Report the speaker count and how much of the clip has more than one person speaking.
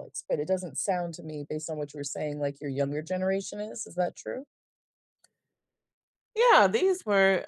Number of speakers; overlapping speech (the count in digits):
2, no overlap